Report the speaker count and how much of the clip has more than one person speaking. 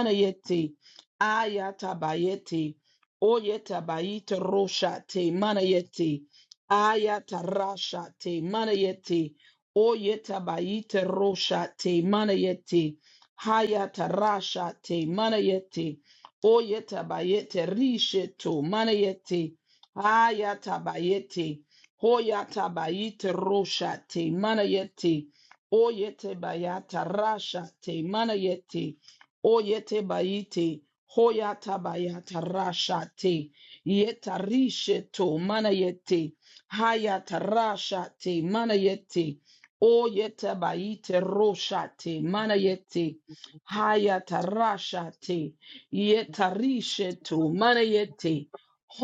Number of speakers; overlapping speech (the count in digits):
1, no overlap